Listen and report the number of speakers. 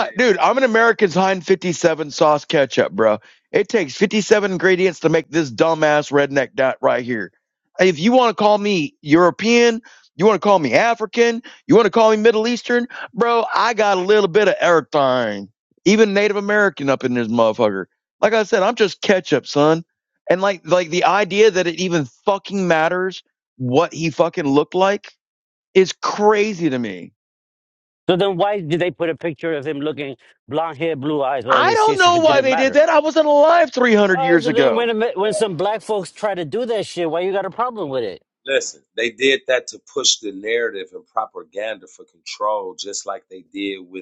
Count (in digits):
3